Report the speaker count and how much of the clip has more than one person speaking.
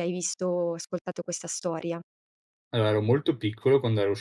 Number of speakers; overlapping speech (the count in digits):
2, no overlap